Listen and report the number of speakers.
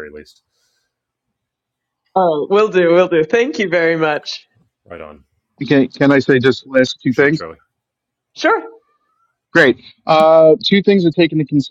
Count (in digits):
3